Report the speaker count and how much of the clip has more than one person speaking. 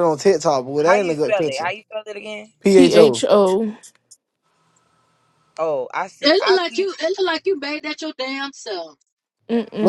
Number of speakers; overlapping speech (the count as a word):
four, about 21%